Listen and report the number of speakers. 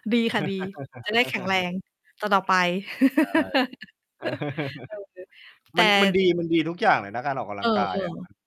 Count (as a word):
two